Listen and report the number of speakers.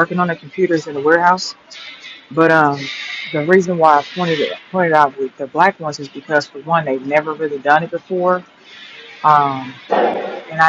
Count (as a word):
one